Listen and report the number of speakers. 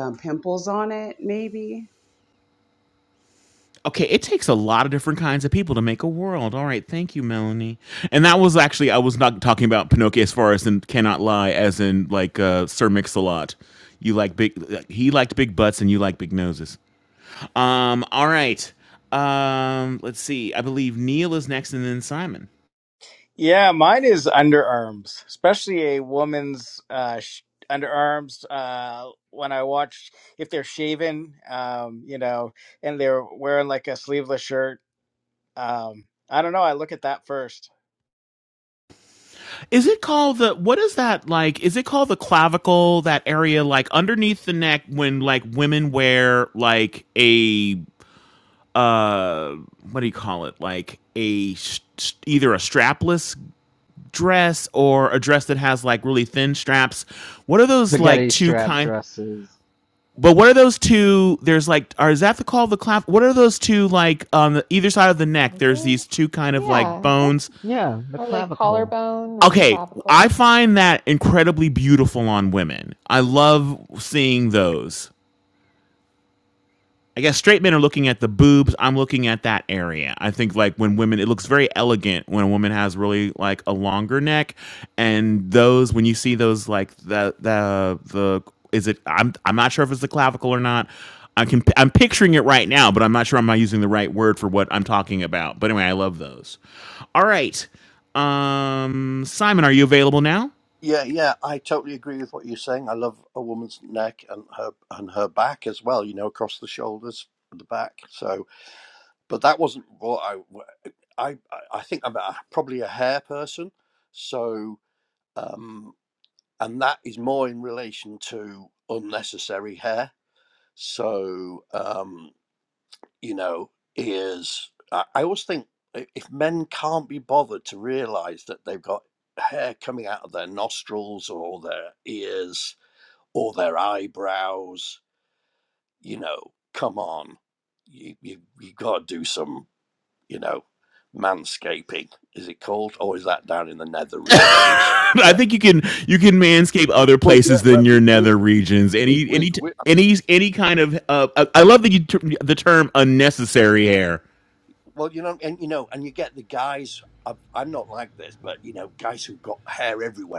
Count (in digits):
6